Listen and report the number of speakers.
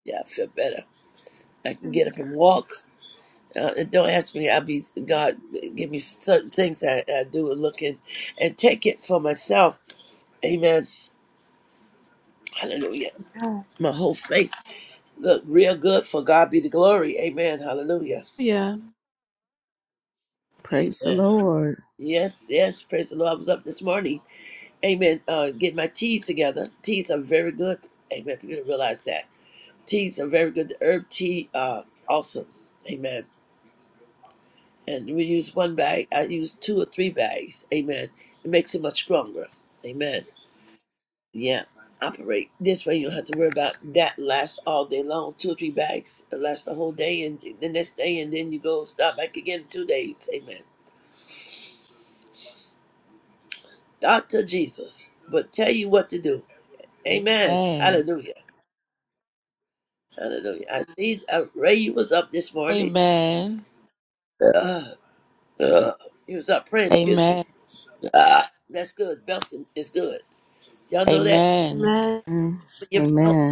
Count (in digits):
4